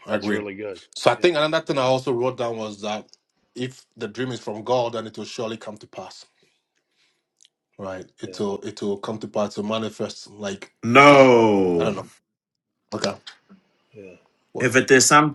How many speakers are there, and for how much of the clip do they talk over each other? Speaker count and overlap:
three, about 6%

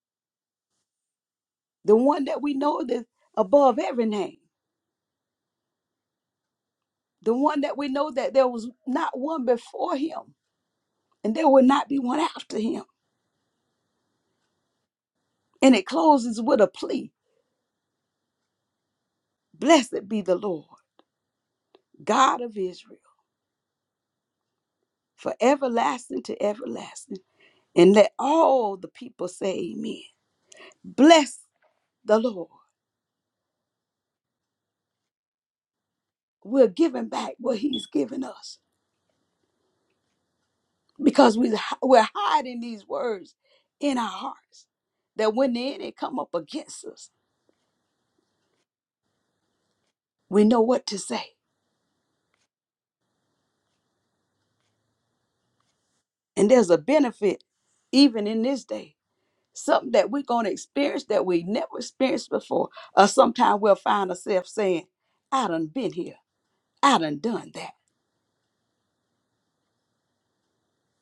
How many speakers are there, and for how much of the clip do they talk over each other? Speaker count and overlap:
one, no overlap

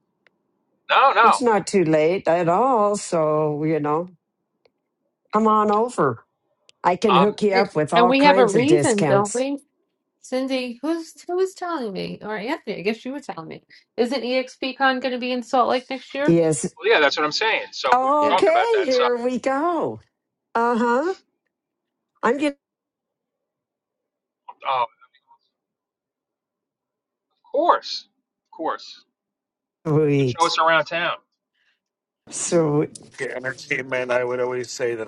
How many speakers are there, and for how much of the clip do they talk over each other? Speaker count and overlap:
four, about 11%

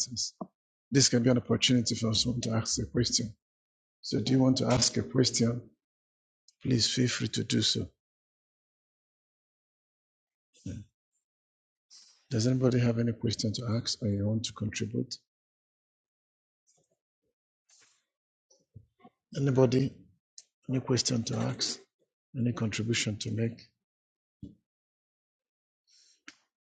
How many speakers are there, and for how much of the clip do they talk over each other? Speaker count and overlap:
one, no overlap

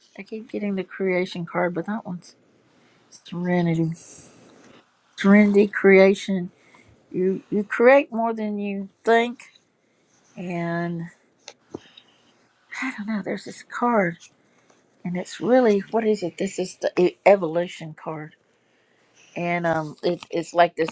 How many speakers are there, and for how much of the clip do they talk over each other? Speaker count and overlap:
one, no overlap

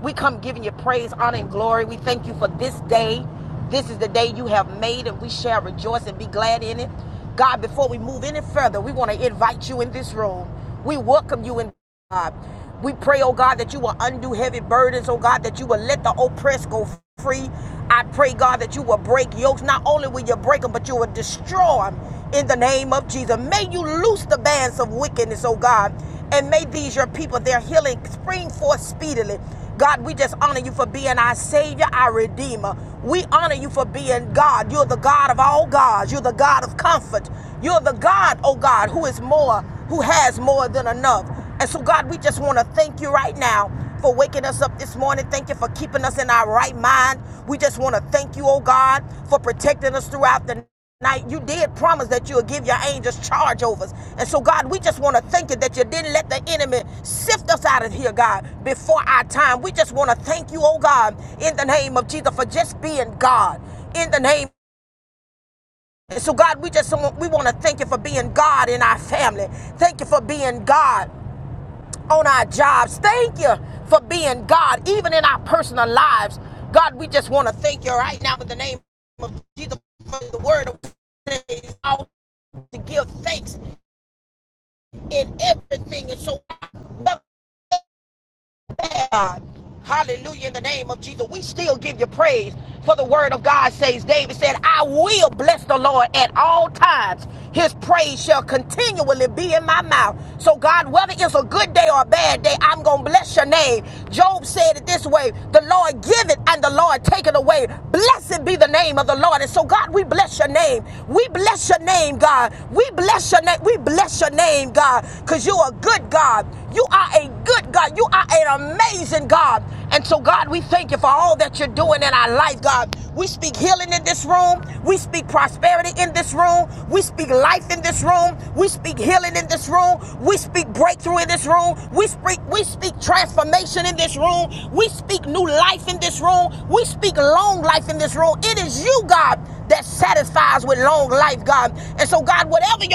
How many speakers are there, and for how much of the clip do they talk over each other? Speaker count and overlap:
one, no overlap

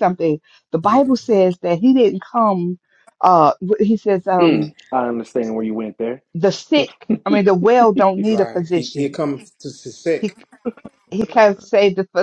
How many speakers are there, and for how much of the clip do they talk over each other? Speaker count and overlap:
three, about 11%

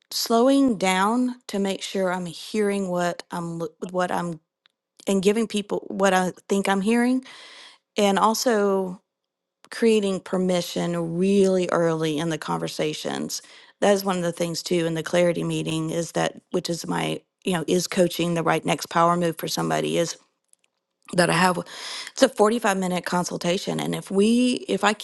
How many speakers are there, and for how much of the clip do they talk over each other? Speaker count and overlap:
one, no overlap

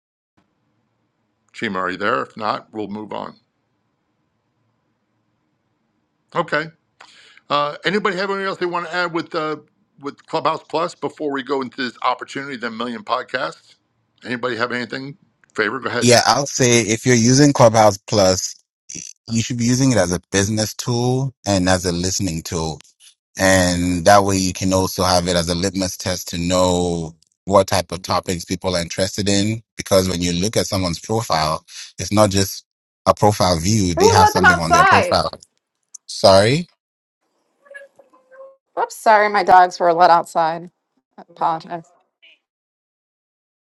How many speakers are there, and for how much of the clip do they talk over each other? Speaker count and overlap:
three, about 3%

